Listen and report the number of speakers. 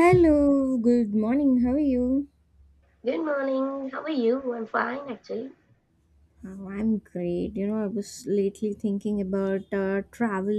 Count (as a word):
two